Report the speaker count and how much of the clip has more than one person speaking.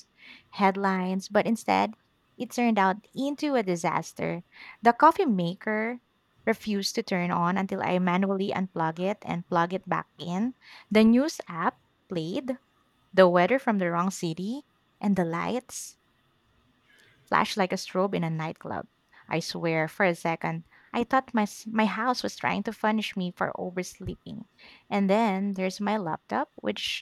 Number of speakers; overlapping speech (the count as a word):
one, no overlap